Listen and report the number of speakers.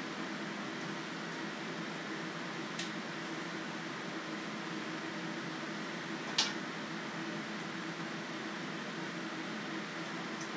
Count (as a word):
zero